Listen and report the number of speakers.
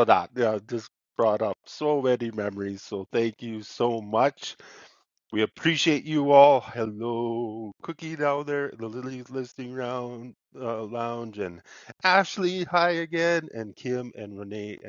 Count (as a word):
one